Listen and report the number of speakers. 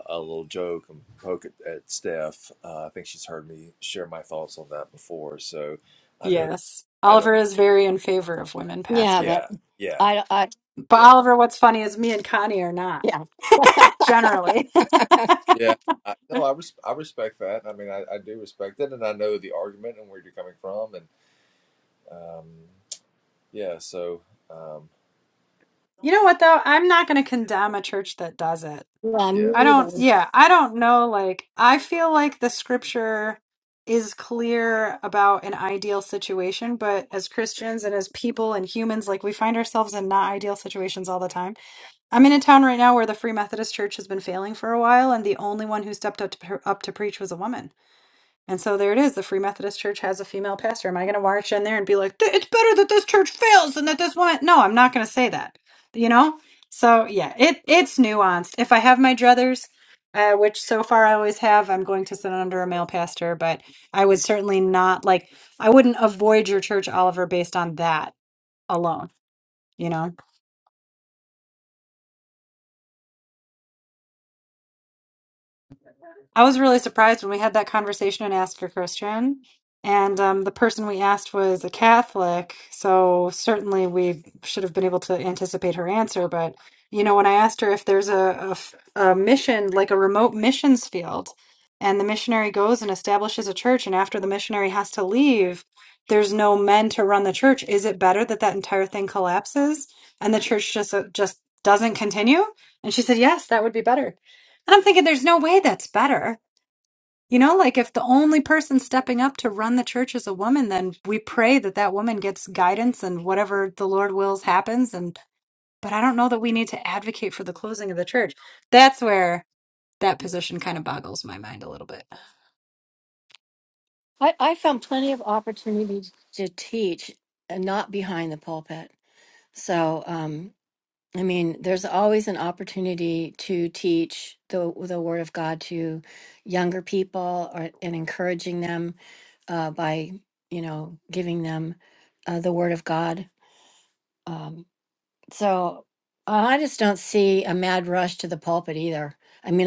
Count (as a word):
three